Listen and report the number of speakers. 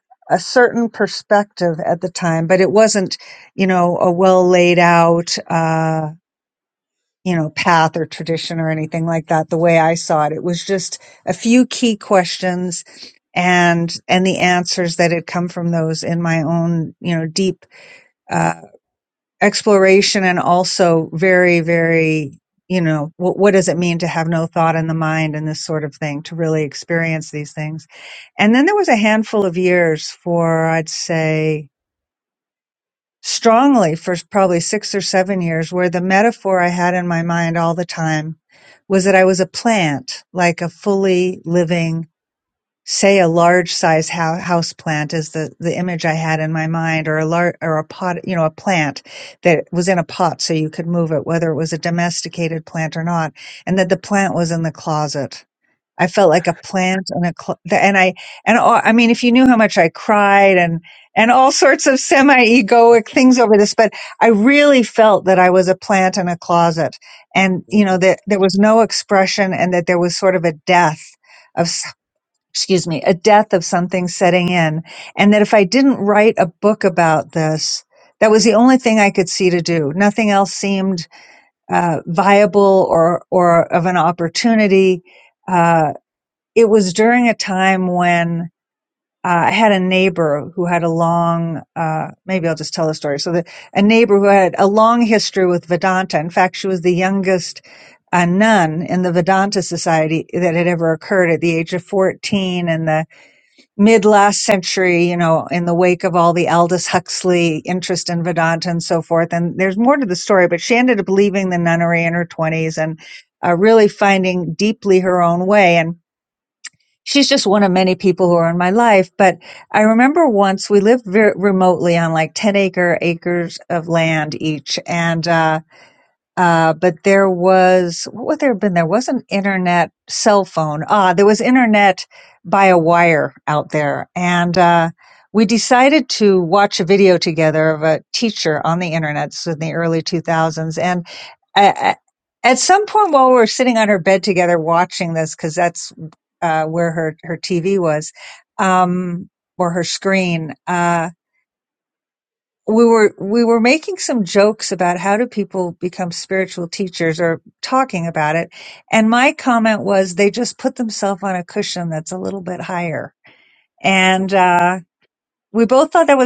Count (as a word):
one